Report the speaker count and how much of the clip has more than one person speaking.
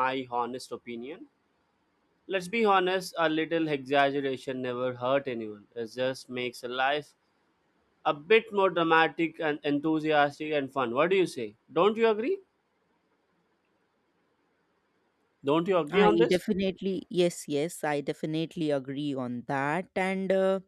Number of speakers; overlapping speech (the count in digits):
2, about 2%